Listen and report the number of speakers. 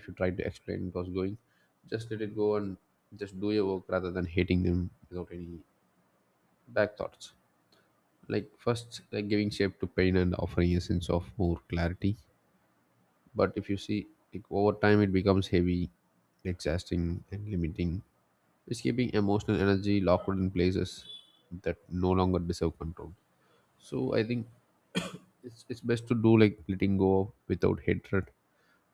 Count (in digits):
1